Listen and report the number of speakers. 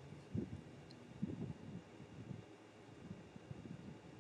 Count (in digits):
0